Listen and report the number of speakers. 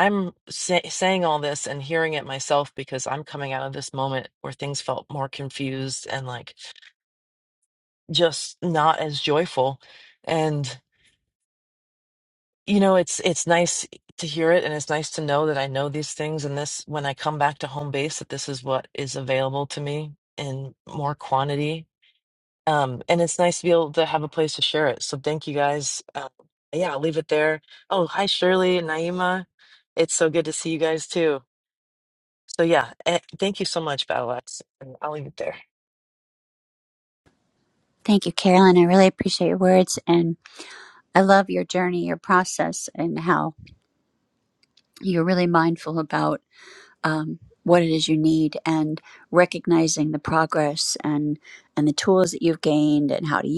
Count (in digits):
2